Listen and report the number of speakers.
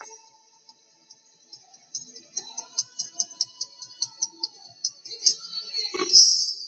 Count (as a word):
zero